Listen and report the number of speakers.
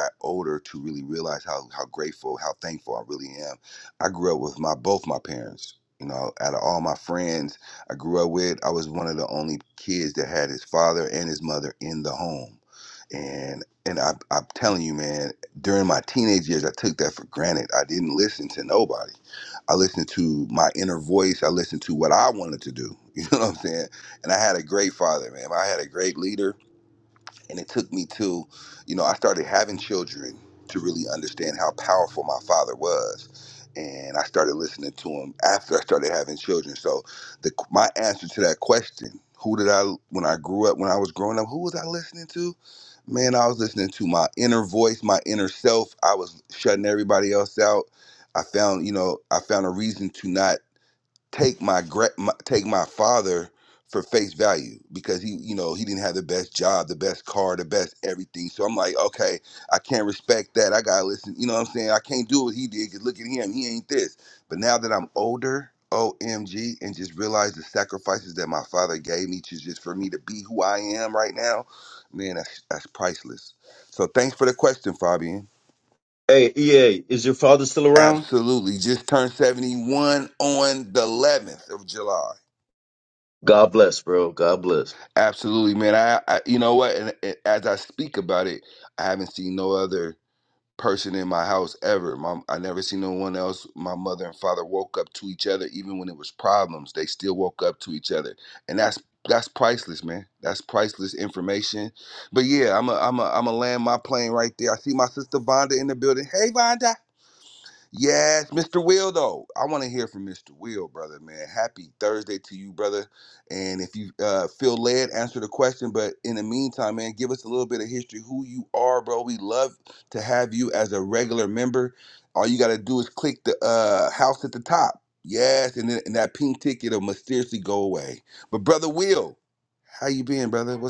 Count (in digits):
2